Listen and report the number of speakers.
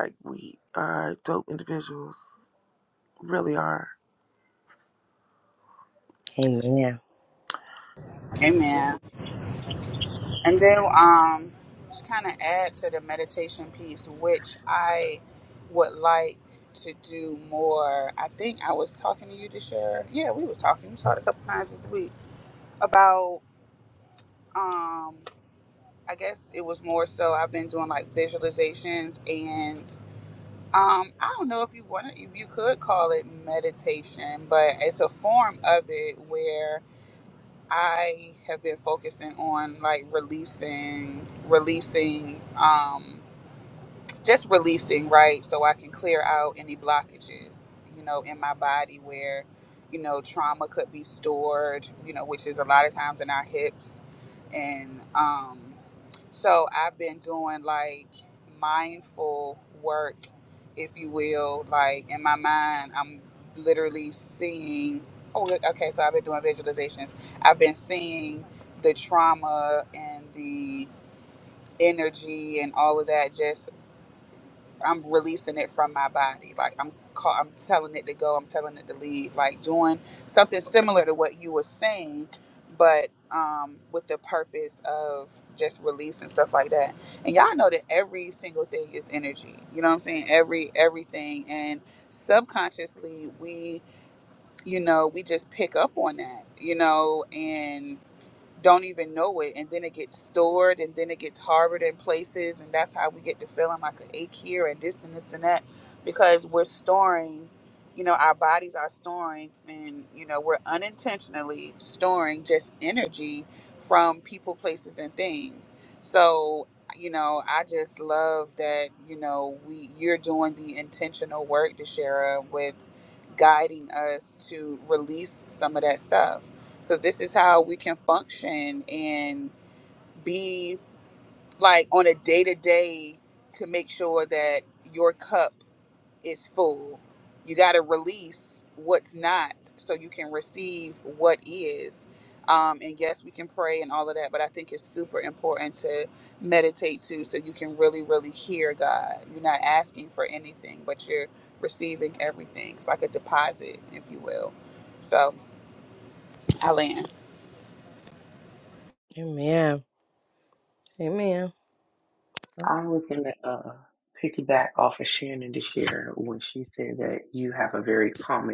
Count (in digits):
4